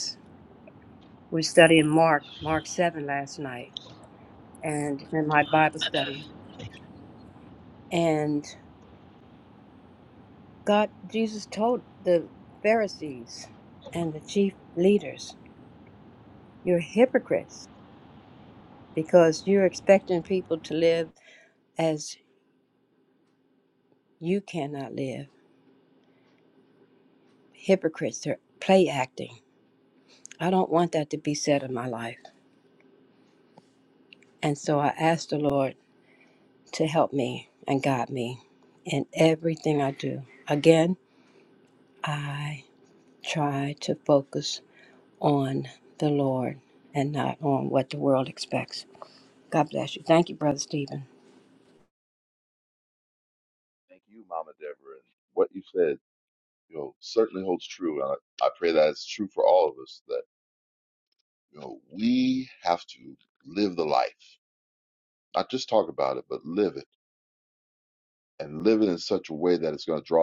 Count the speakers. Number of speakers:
two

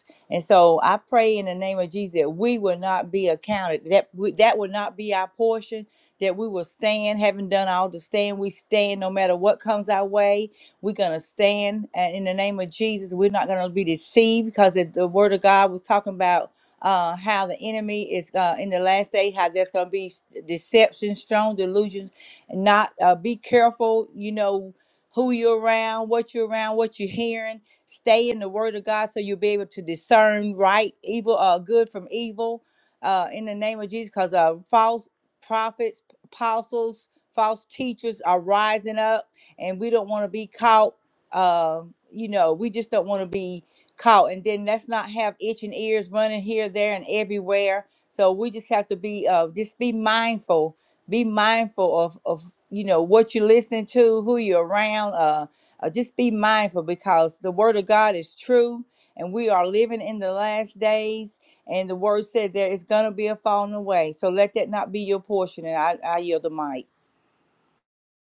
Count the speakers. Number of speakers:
one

